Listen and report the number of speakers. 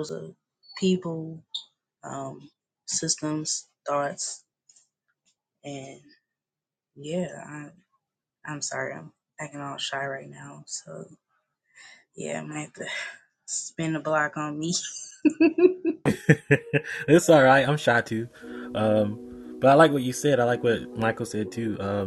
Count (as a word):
two